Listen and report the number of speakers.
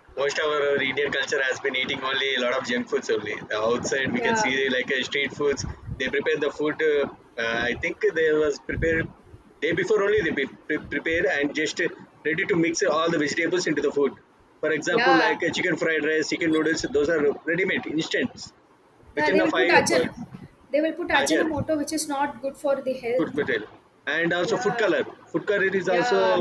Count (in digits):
2